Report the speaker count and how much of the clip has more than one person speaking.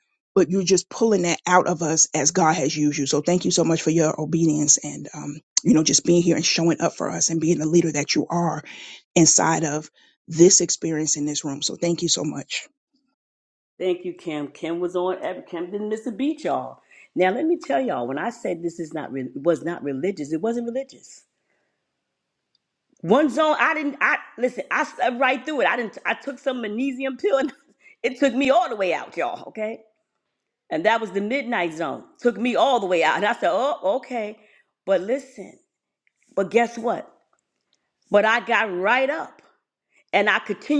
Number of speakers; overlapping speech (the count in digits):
2, no overlap